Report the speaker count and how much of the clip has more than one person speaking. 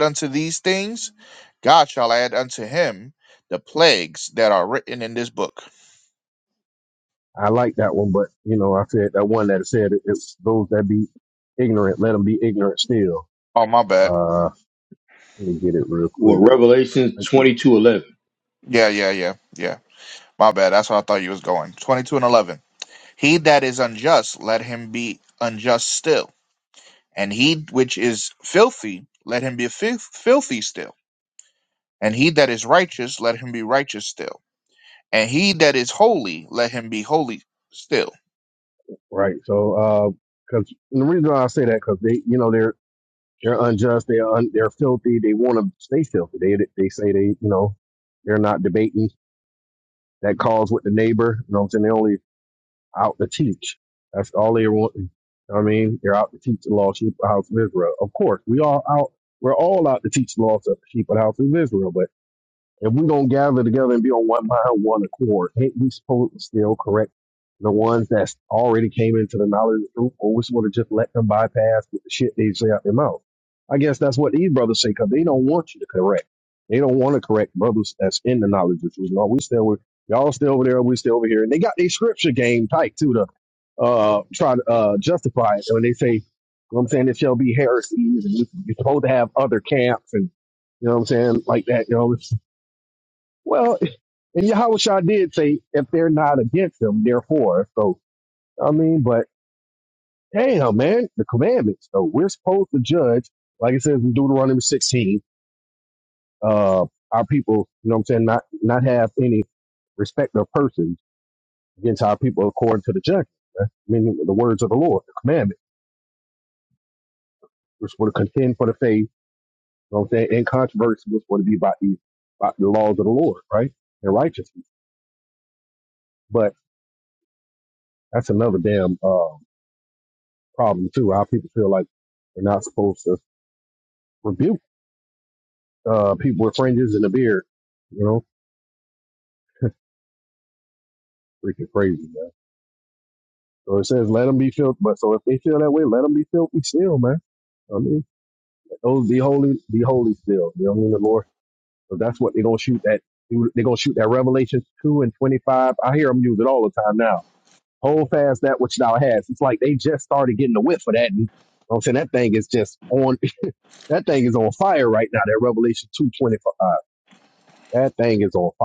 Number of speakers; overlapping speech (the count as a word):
three, under 1%